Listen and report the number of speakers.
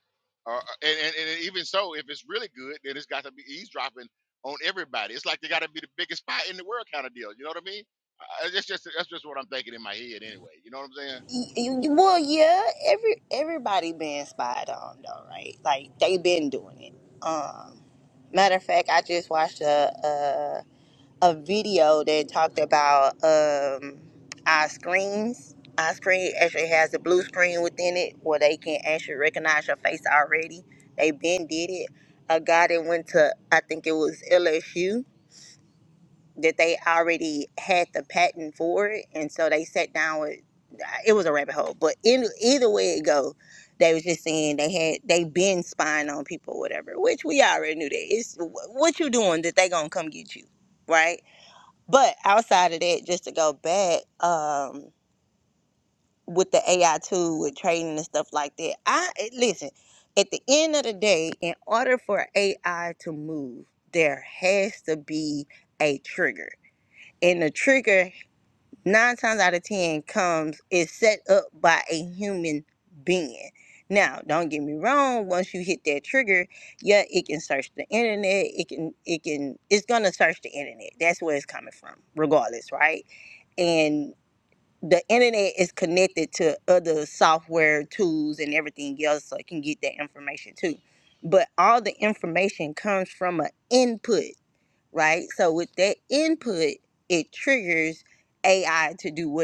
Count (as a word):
two